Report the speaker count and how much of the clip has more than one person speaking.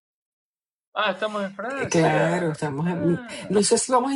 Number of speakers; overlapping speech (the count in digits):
2, about 41%